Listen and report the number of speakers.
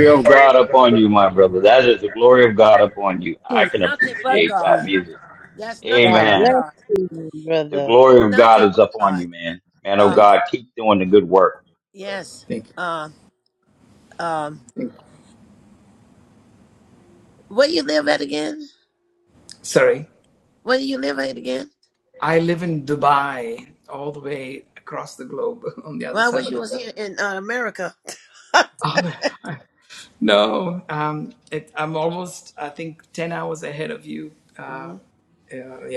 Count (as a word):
four